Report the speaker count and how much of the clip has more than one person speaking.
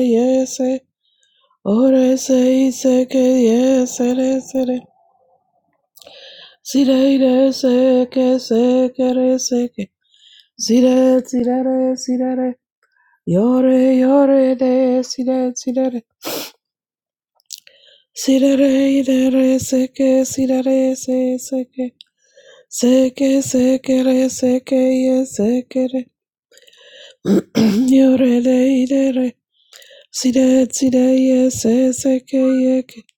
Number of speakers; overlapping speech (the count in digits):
1, no overlap